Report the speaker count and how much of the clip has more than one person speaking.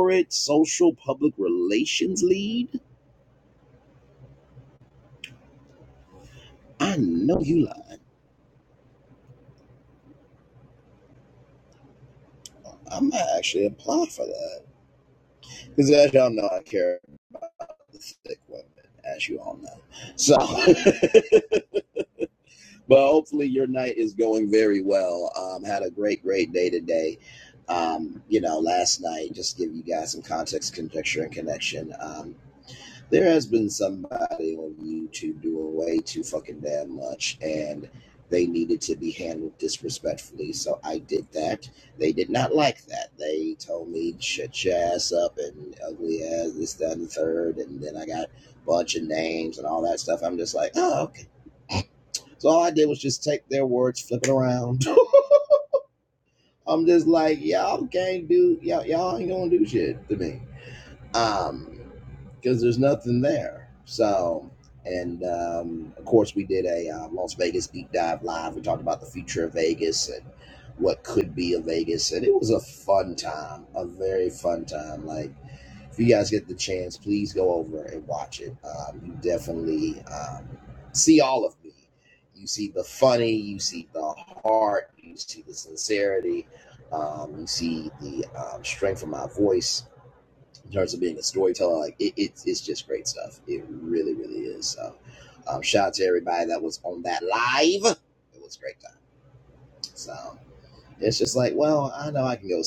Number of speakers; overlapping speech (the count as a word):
one, no overlap